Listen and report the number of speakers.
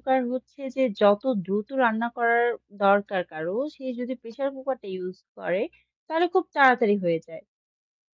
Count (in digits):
1